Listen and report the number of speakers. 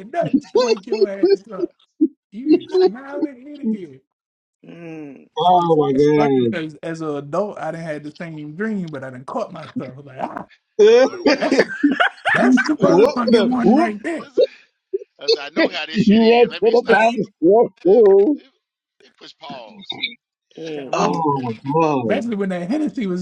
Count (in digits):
4